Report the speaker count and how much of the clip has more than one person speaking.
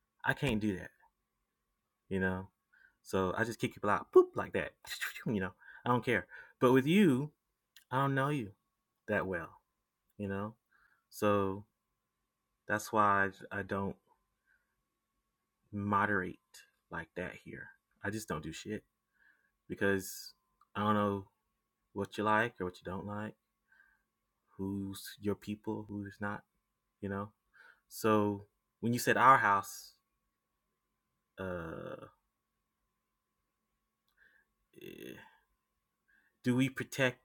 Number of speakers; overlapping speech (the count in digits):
1, no overlap